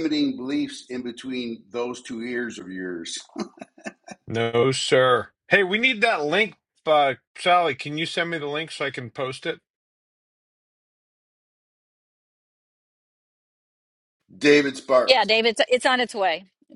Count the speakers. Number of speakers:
3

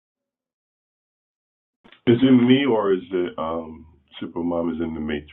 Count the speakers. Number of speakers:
1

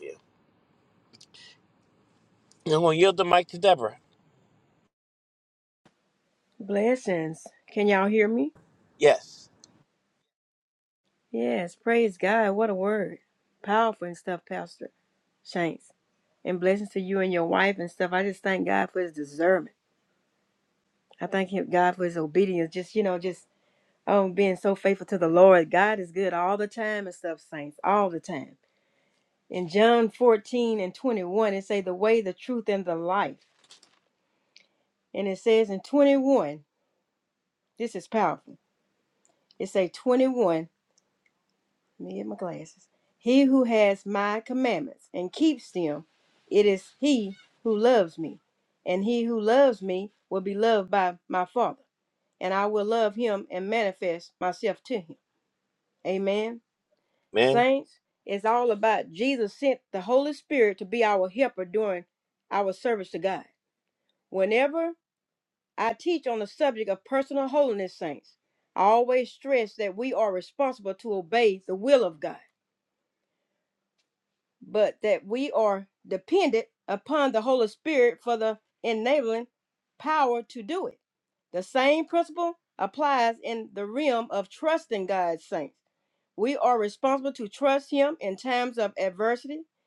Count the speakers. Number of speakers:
2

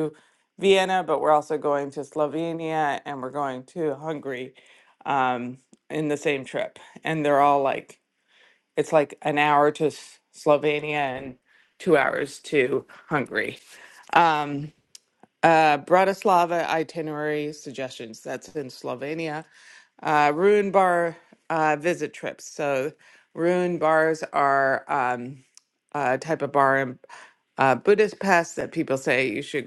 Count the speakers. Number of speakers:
1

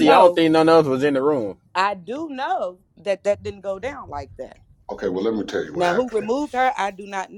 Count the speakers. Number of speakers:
3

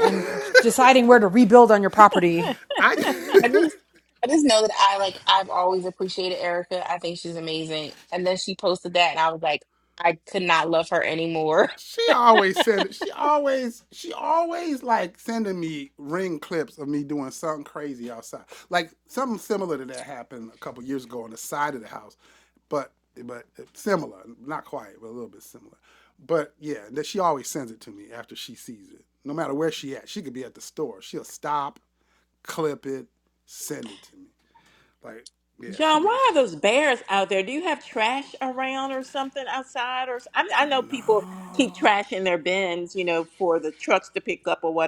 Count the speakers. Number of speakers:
4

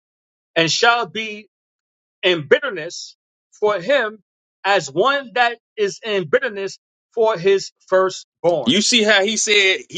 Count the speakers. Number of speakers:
2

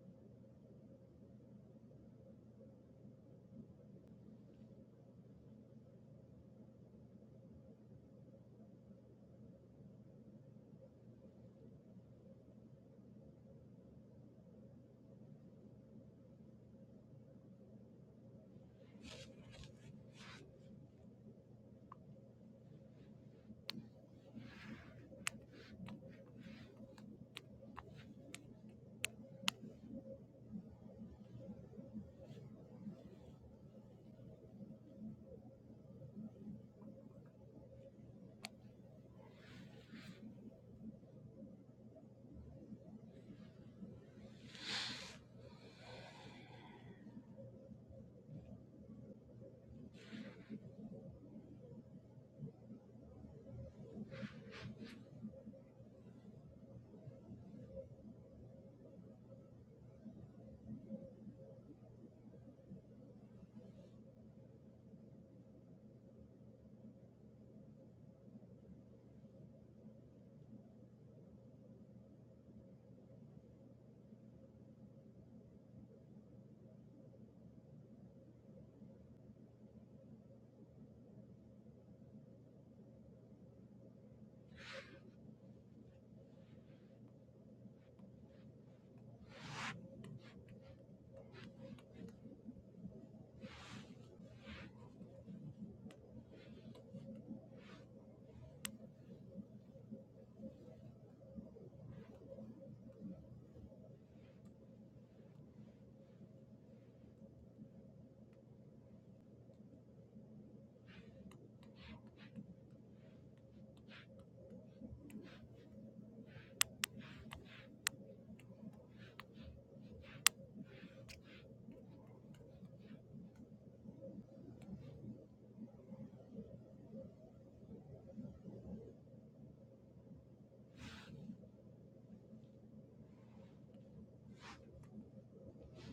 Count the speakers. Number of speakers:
0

